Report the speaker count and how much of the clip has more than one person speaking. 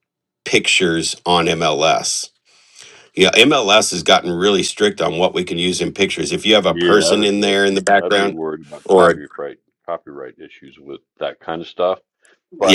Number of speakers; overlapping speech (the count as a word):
two, about 14%